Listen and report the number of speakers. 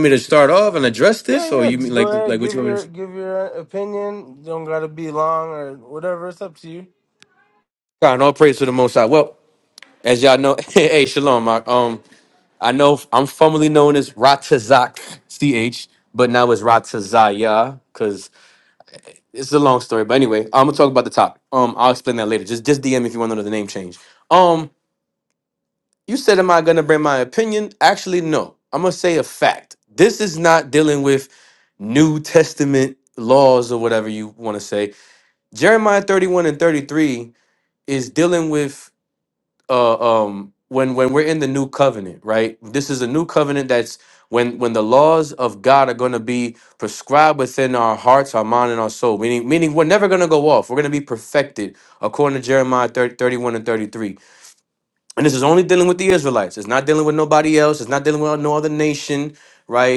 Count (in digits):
2